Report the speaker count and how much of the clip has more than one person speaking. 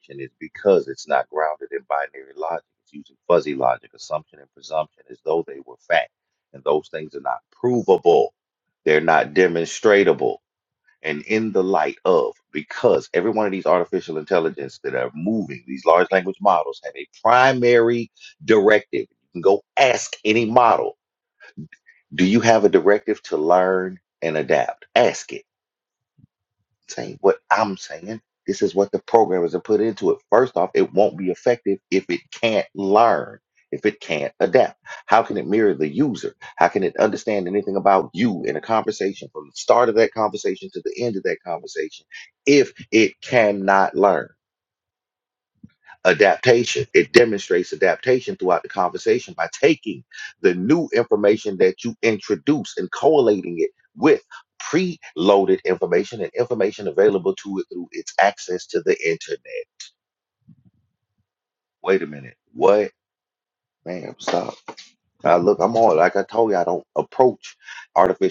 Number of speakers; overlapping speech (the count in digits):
1, no overlap